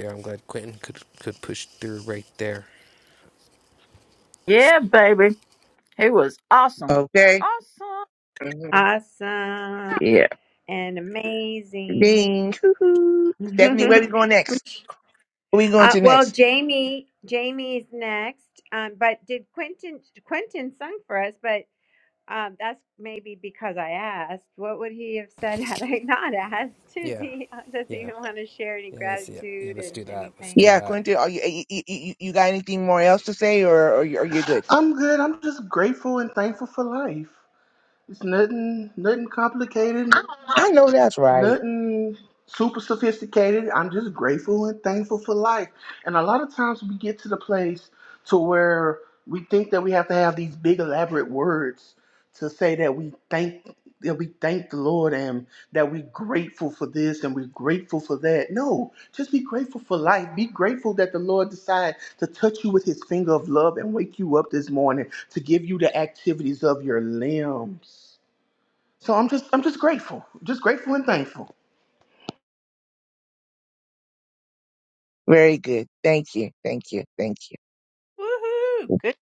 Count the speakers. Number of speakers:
5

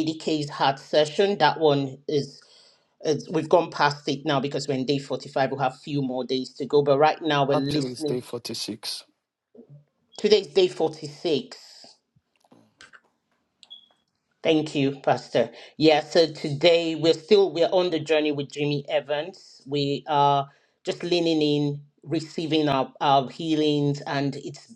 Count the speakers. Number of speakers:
2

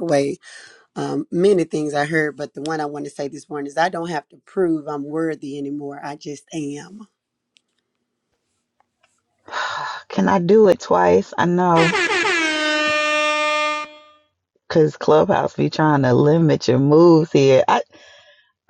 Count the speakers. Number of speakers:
2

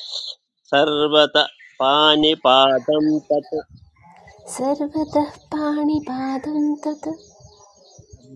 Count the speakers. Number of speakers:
2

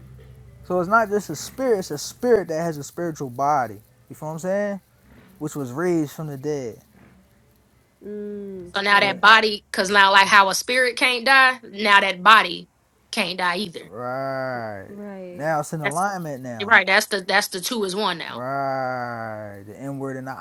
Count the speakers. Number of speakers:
3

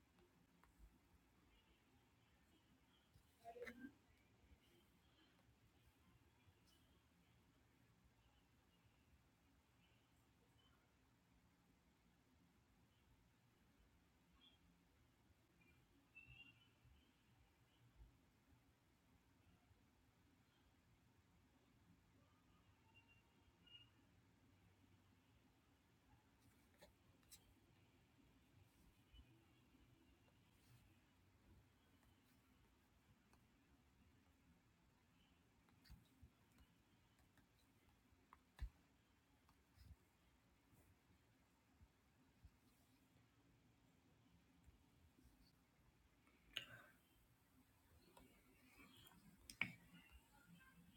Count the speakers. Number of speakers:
0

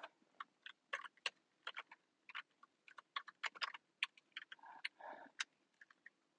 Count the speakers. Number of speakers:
0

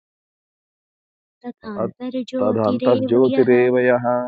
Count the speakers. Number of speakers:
2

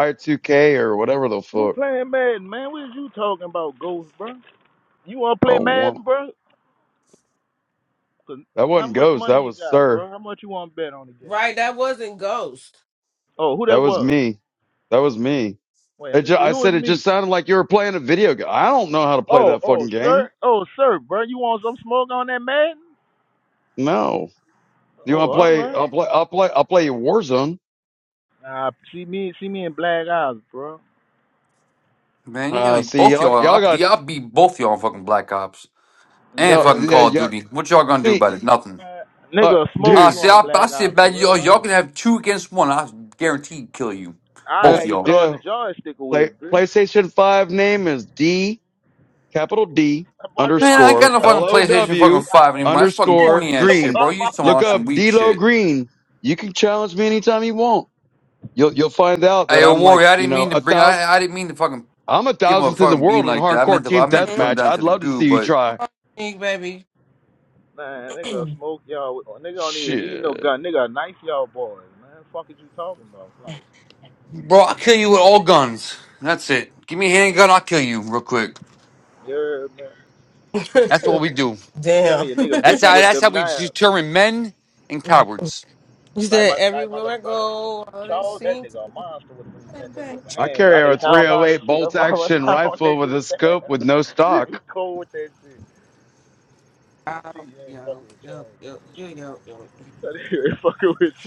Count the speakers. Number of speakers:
4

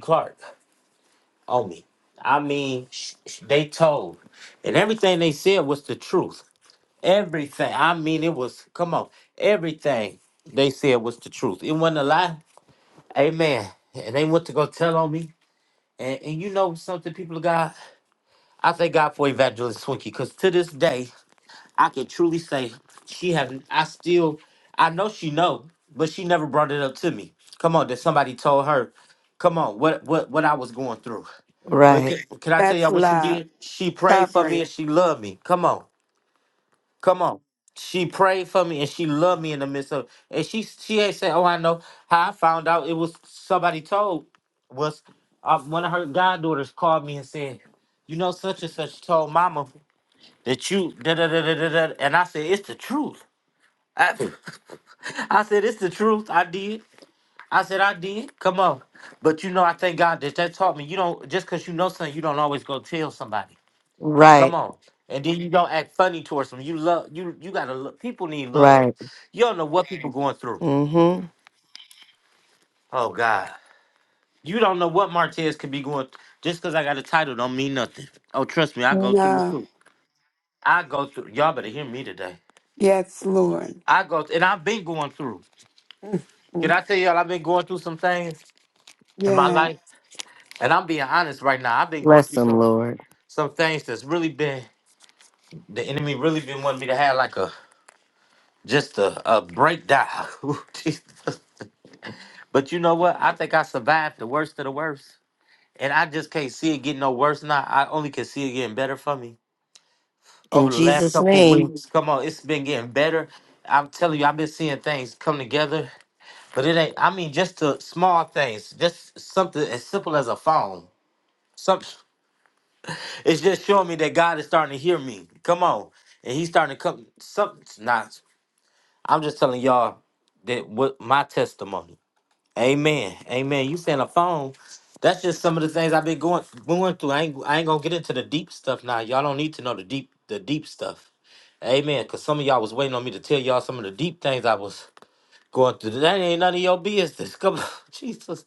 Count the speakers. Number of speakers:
3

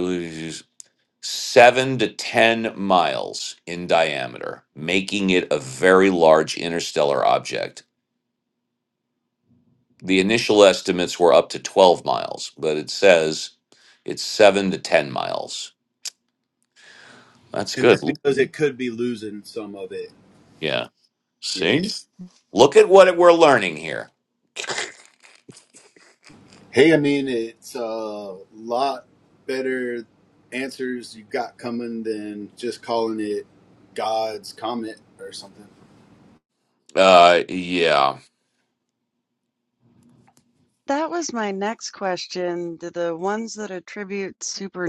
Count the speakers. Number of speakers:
3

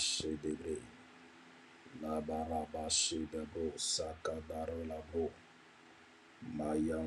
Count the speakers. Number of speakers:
1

